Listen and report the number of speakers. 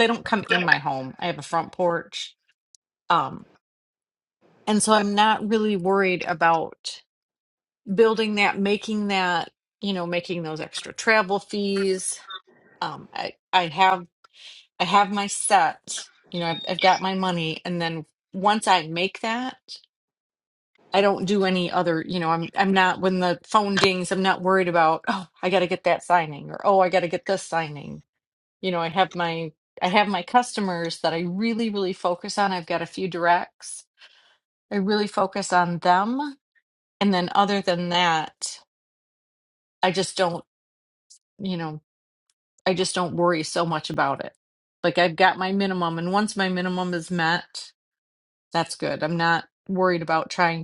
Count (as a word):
one